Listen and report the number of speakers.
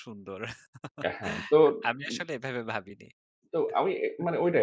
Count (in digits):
2